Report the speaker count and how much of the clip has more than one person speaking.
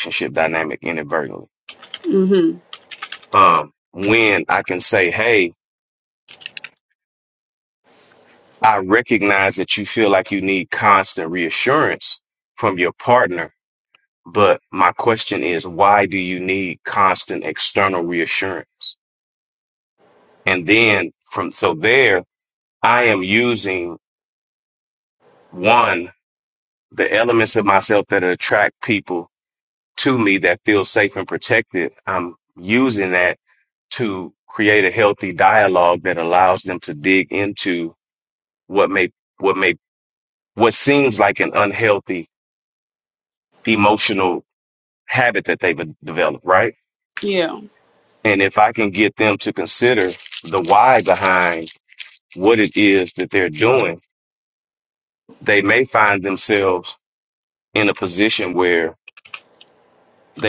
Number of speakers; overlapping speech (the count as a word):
two, no overlap